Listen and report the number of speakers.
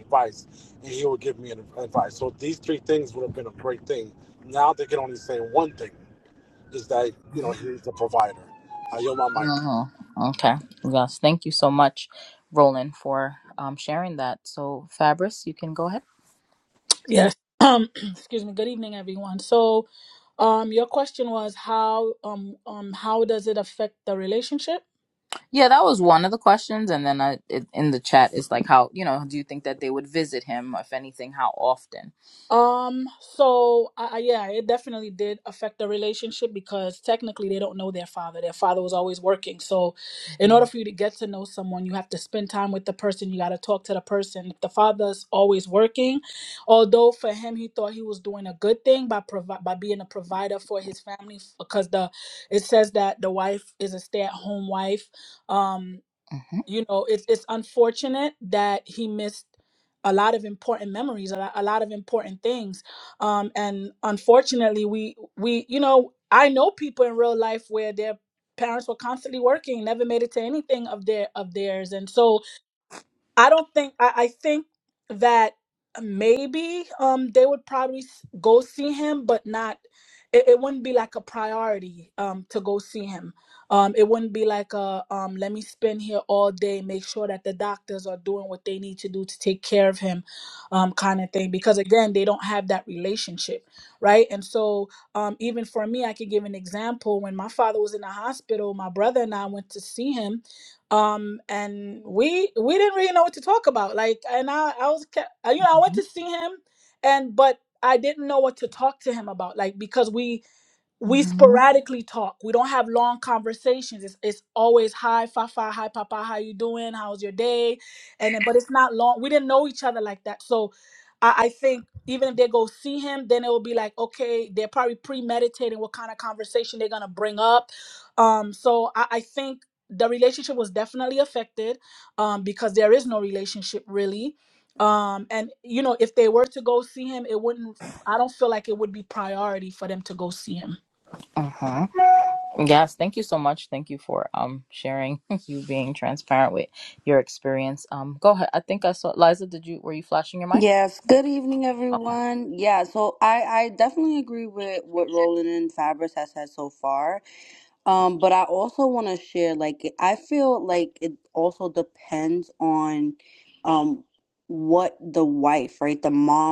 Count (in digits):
4